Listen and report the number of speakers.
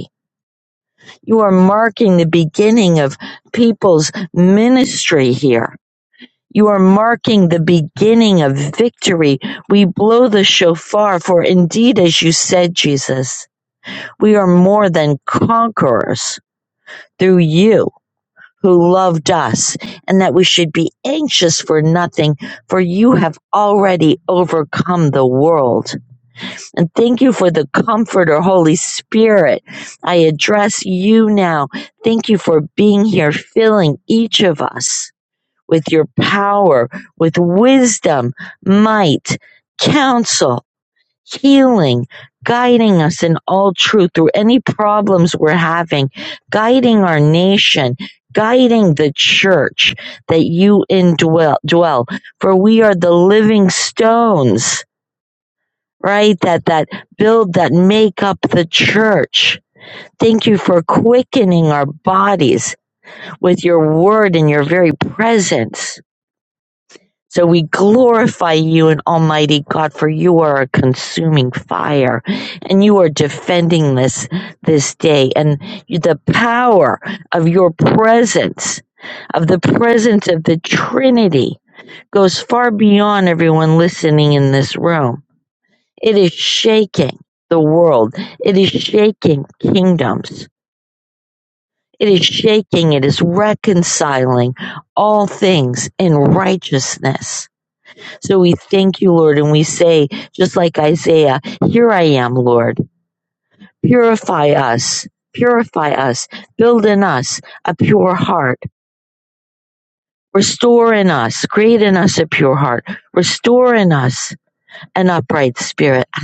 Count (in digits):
1